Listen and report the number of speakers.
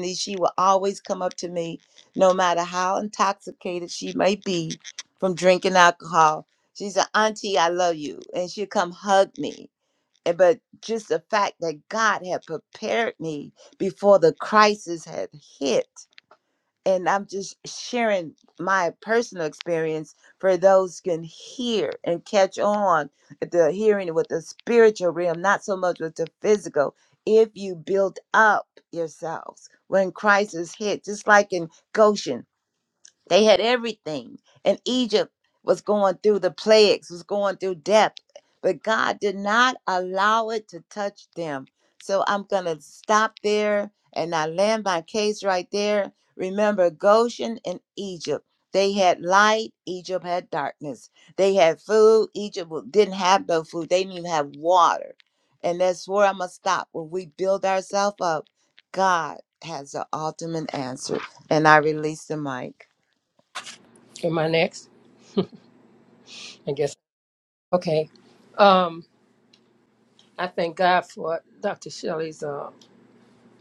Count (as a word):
two